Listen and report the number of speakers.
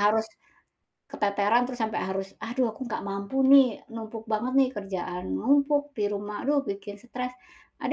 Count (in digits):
1